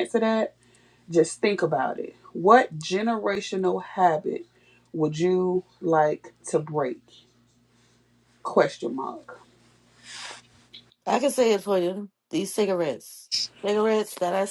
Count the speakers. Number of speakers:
two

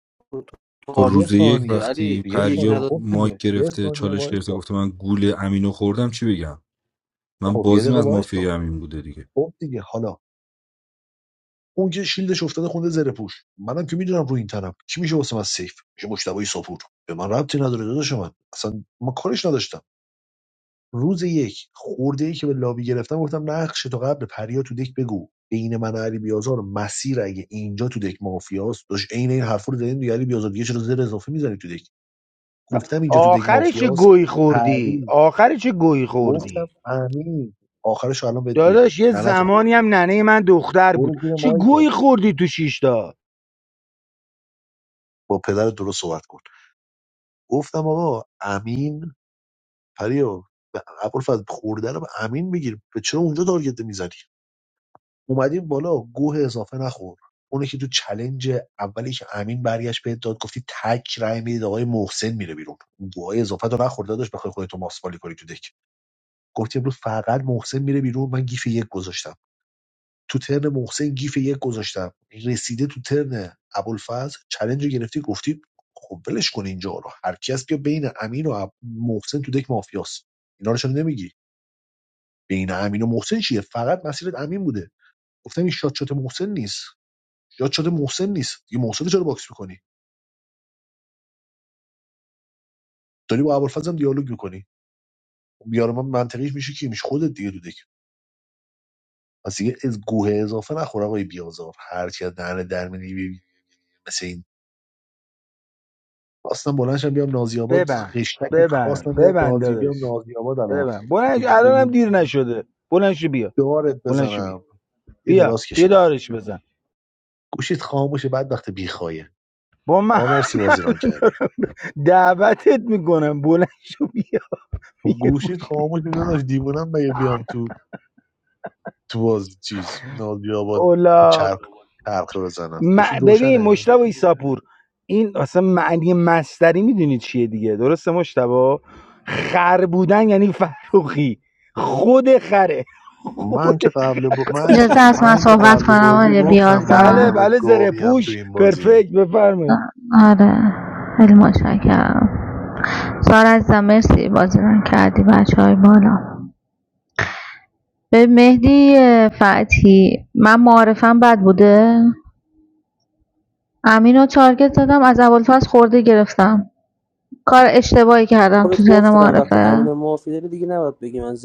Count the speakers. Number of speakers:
five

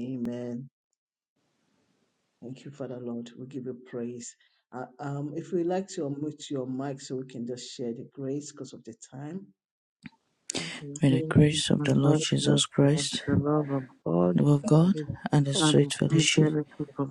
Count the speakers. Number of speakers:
three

